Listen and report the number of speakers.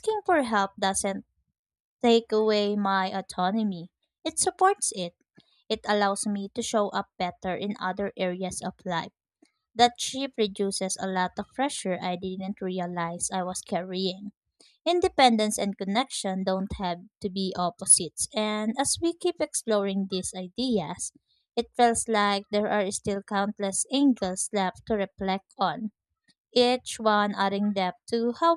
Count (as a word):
one